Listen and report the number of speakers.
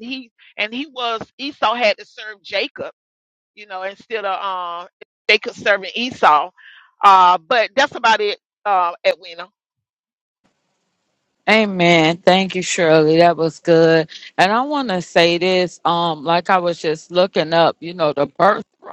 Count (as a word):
two